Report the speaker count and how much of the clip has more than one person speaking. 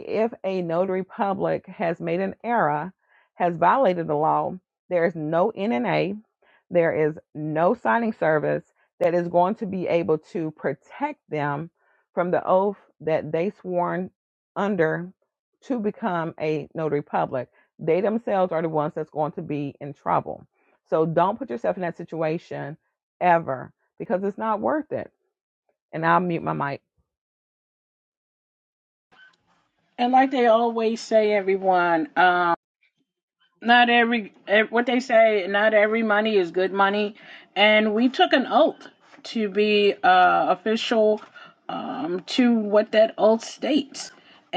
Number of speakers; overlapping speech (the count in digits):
2, no overlap